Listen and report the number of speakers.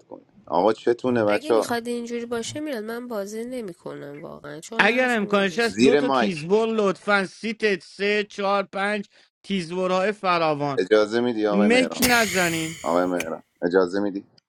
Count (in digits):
3